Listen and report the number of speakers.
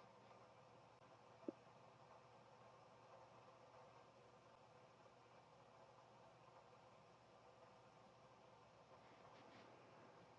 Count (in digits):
0